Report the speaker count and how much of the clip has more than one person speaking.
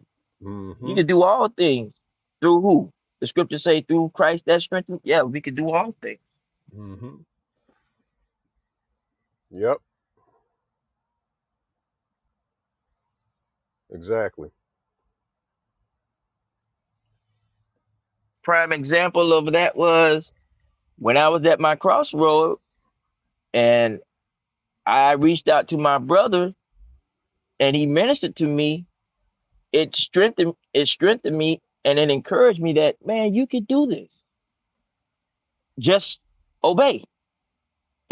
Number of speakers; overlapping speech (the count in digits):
2, under 1%